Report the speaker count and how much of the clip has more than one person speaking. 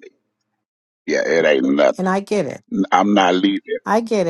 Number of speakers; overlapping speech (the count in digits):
2, no overlap